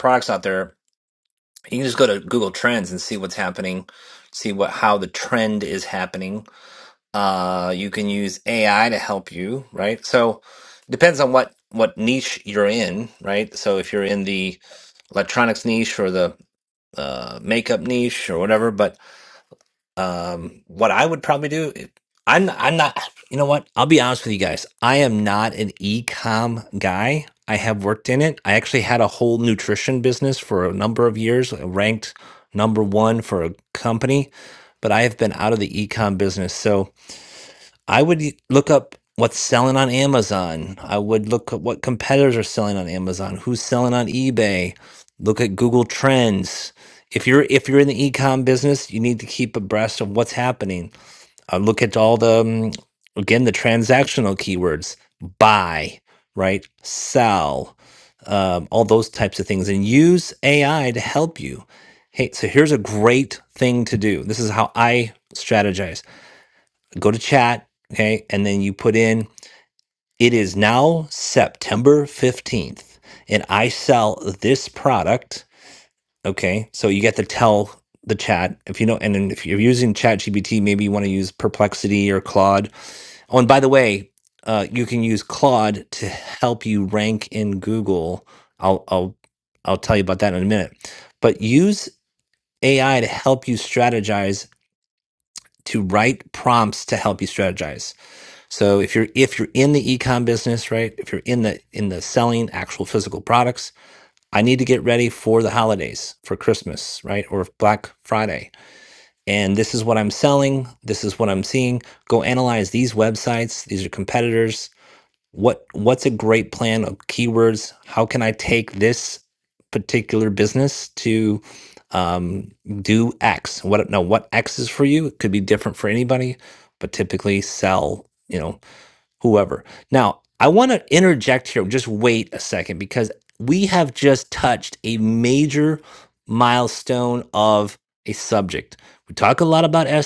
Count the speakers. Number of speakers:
1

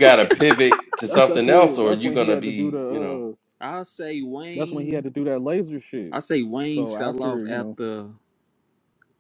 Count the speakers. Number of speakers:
3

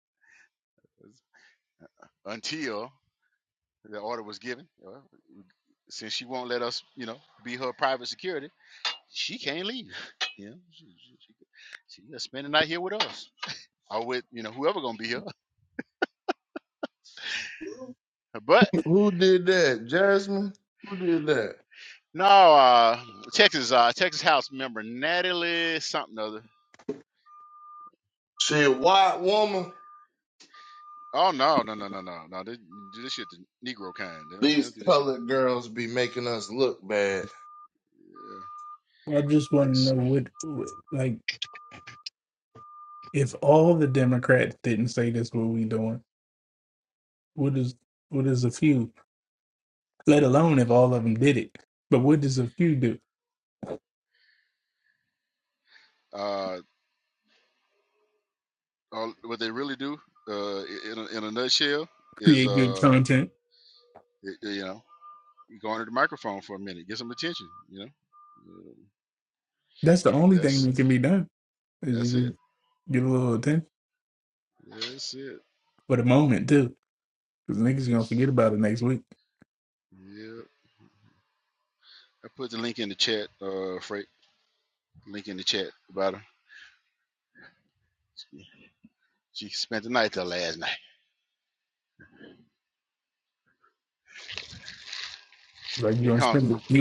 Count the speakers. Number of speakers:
3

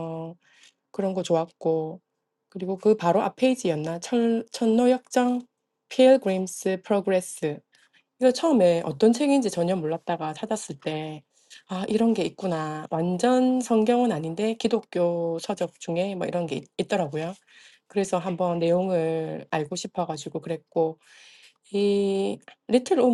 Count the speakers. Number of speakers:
1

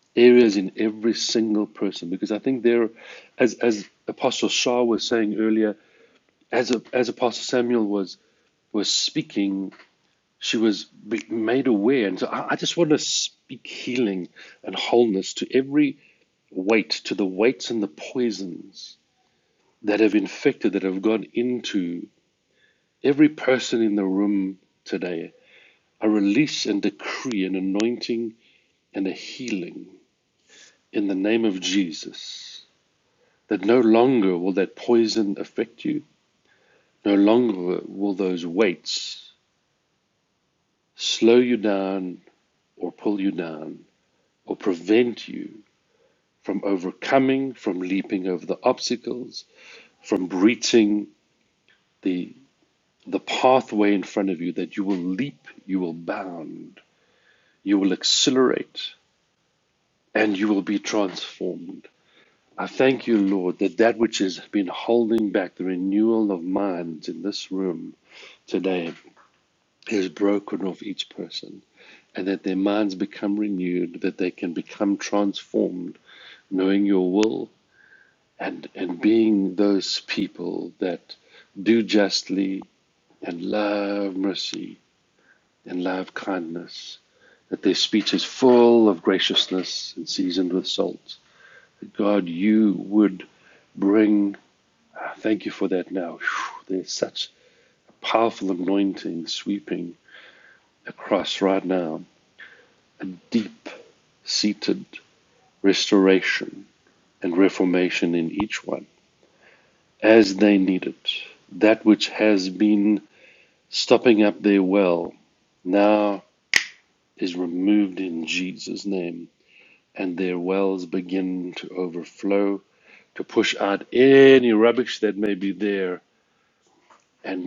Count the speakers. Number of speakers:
1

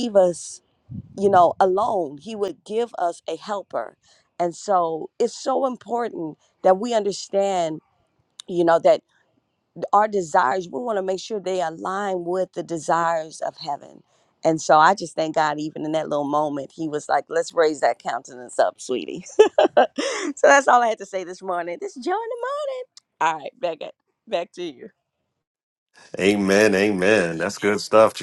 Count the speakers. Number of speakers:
2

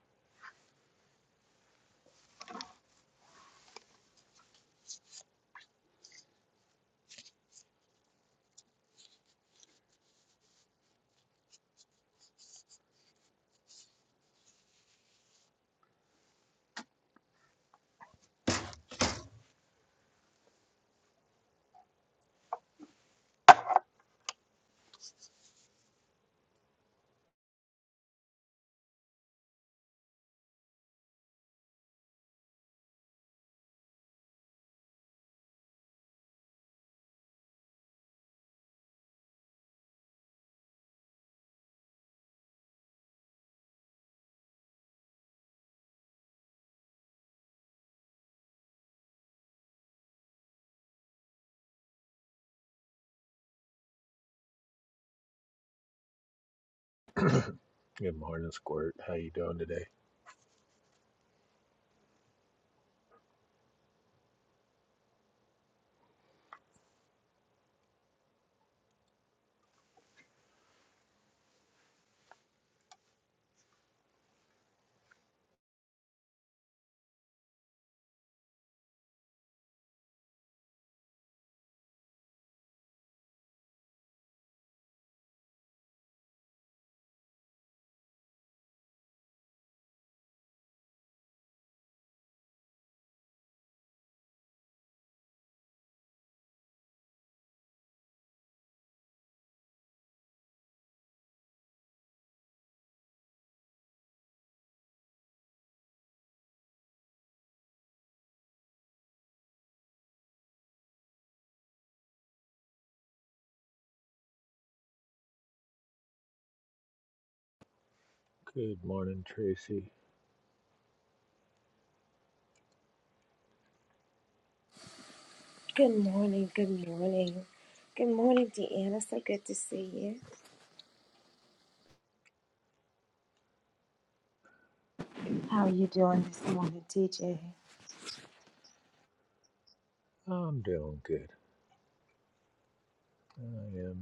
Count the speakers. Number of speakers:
2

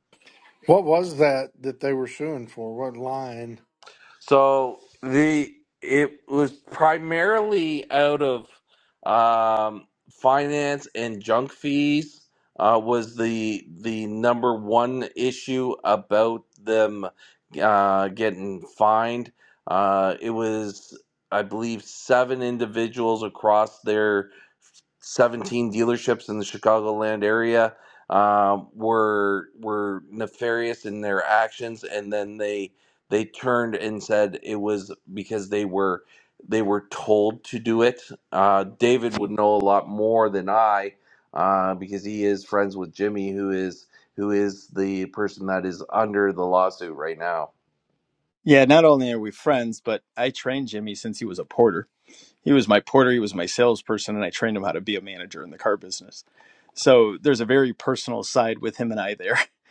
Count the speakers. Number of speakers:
3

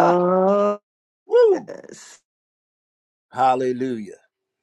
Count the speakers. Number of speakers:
2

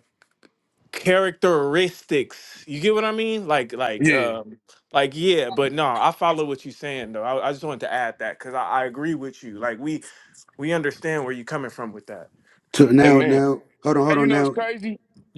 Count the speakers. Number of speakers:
3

